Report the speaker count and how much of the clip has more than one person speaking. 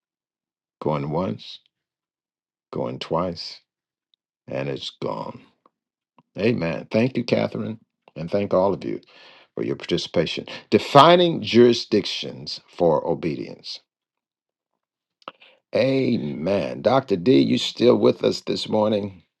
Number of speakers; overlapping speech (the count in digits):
1, no overlap